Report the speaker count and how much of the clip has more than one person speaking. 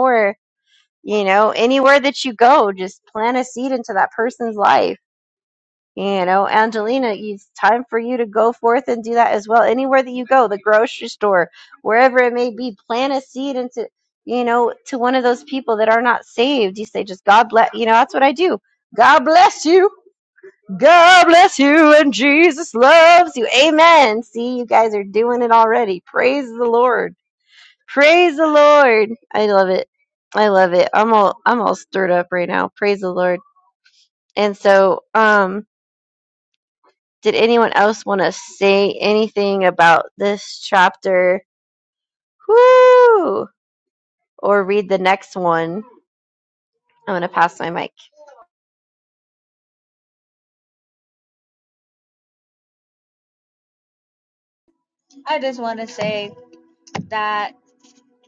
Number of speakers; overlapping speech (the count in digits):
2, no overlap